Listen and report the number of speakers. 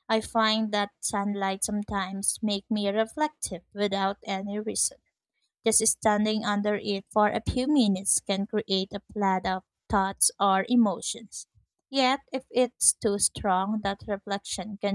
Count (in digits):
1